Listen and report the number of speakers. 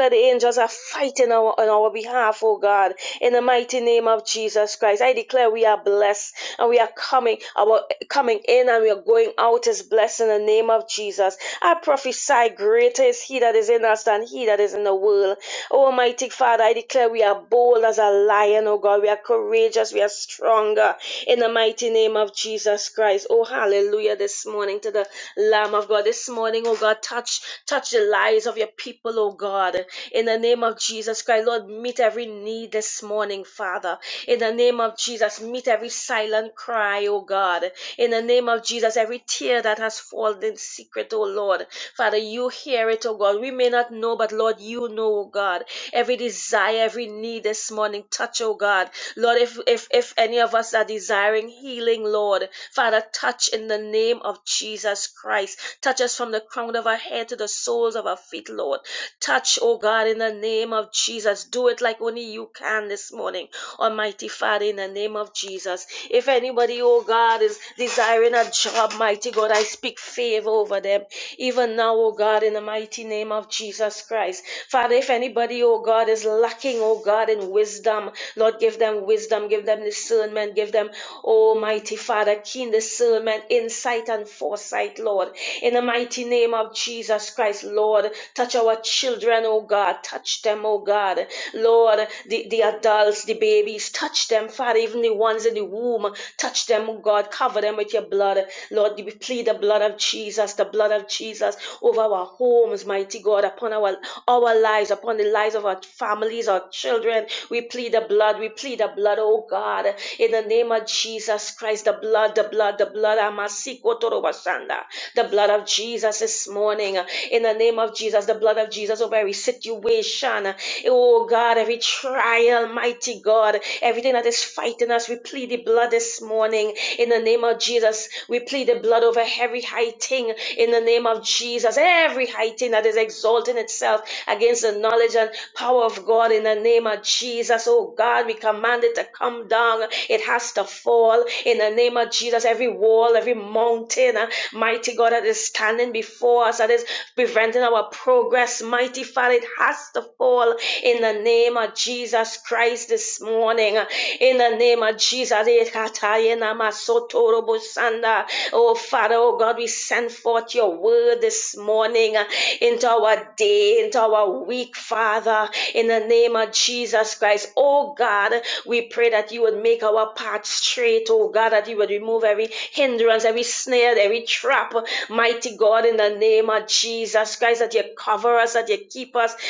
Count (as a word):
one